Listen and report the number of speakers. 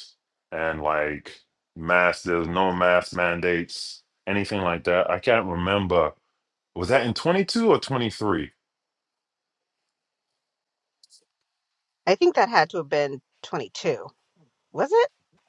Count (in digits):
2